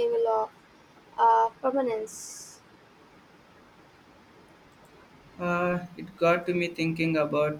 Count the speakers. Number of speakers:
2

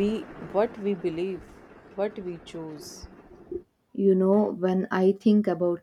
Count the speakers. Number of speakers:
2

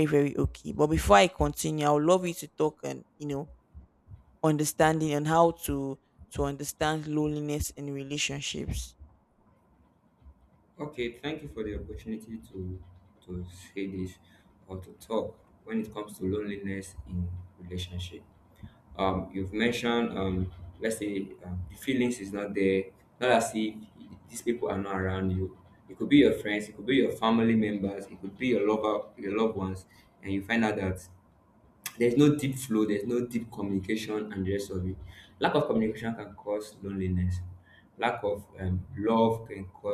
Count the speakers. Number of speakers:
2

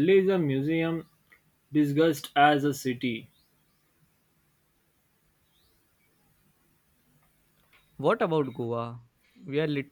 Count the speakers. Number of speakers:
2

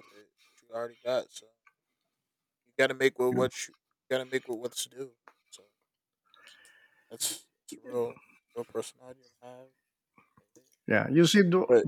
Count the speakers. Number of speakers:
2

